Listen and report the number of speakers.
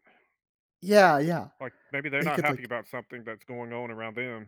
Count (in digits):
2